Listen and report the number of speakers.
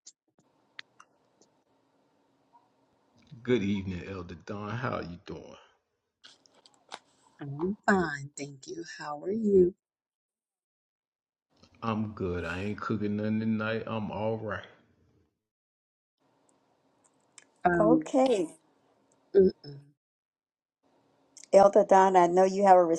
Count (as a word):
three